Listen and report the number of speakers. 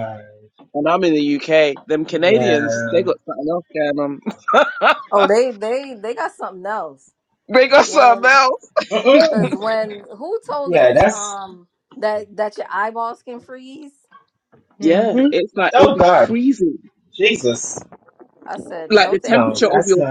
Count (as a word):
three